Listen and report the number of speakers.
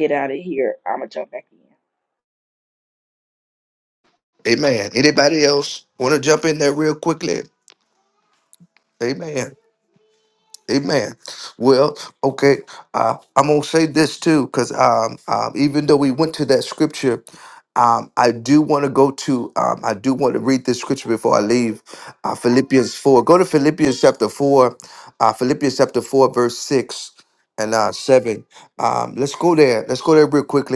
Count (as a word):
two